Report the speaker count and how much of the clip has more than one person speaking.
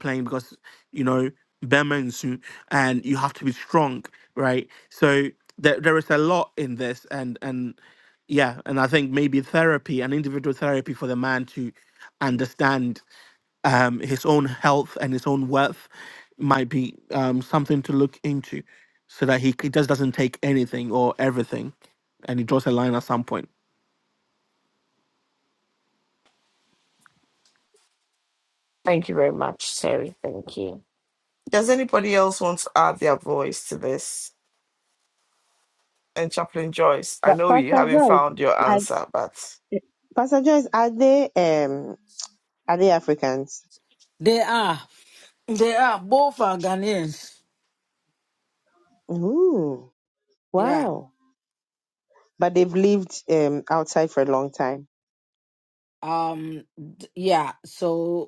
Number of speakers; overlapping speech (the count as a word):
four, about 3%